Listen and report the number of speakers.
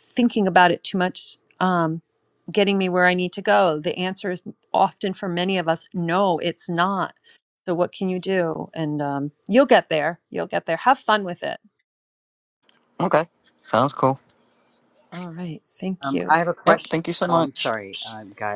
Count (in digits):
3